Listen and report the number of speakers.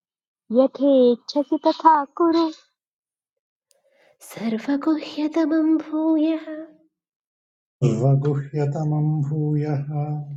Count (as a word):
three